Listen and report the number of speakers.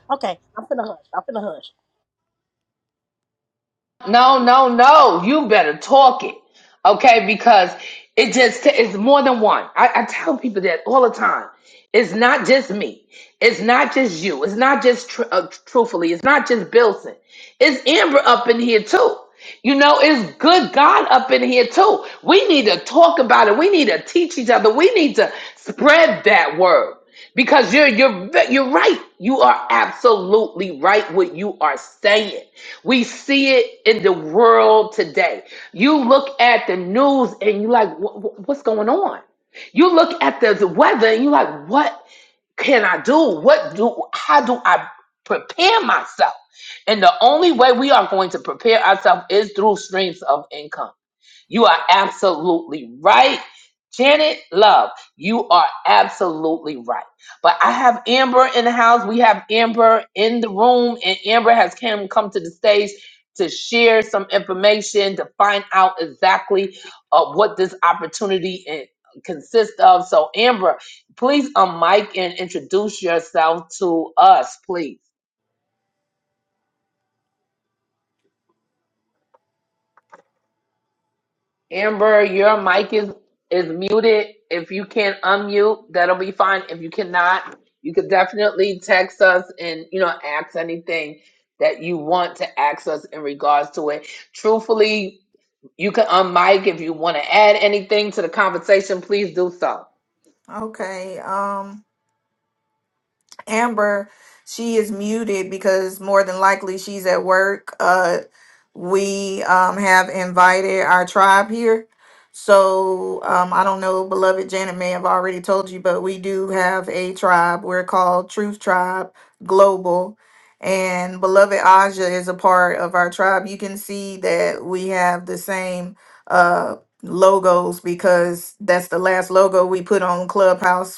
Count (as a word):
three